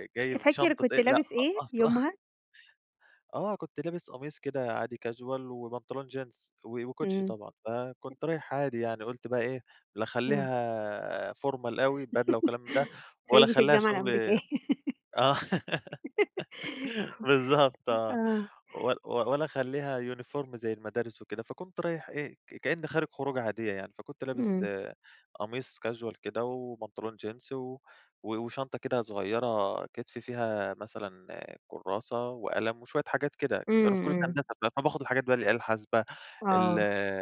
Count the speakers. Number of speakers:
two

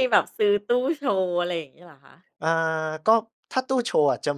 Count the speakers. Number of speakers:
two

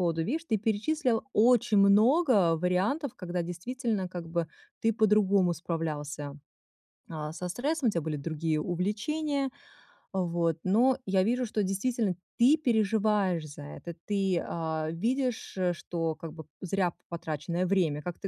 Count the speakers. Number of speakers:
one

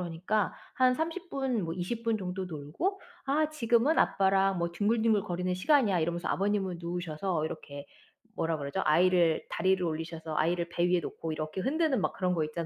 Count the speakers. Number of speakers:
one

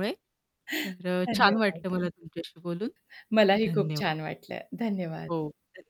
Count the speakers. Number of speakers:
two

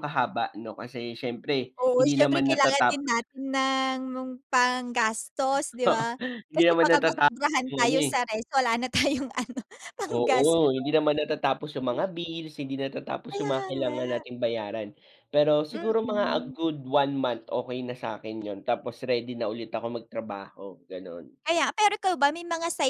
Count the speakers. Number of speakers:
two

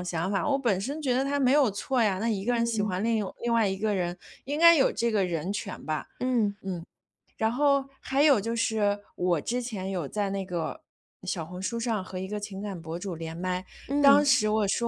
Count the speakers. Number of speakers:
two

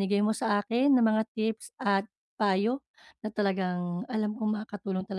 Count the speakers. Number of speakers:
one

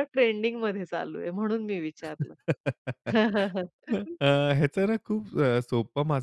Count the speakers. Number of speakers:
two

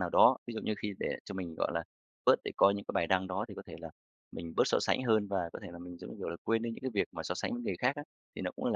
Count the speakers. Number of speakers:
one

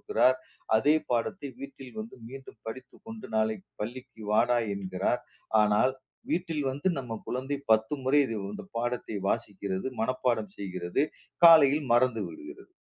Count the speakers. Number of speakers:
one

